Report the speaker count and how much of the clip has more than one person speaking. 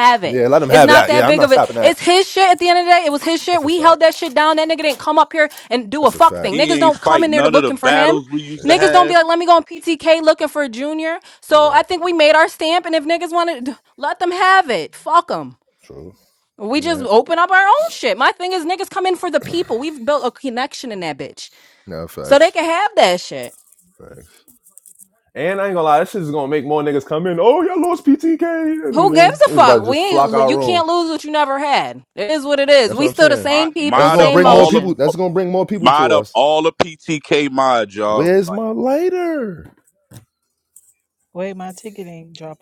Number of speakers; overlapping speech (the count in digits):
4, about 23%